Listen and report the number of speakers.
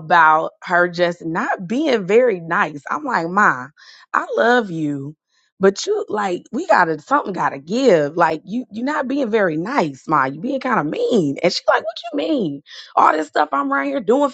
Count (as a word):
one